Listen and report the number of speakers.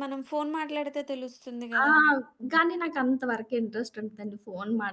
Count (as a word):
two